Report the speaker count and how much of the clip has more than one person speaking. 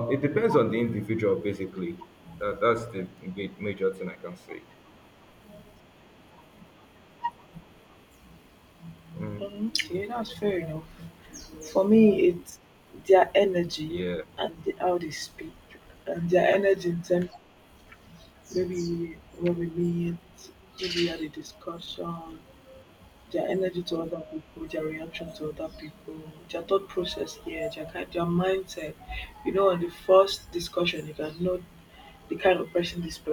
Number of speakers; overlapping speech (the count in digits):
2, under 1%